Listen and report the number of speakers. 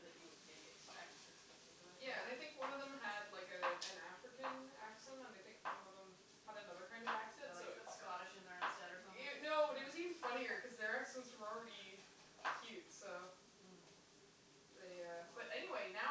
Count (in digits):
2